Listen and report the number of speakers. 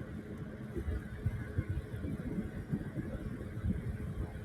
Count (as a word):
zero